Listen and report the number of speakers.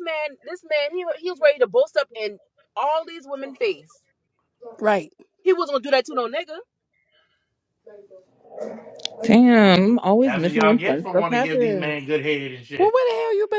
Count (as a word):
four